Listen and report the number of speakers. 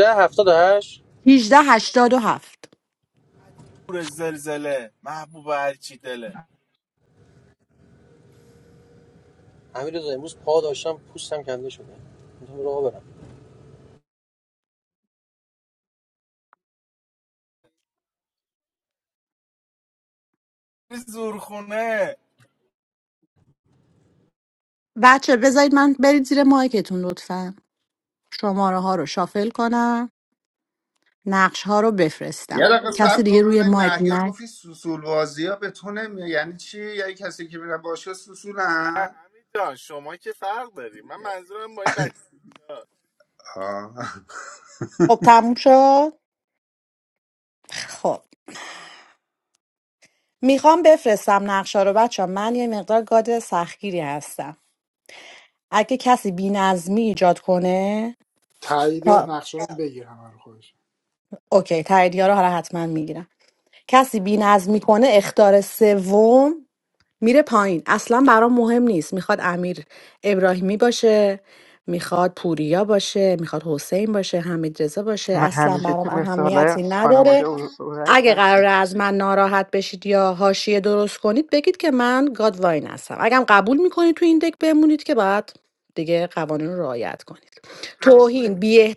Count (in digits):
6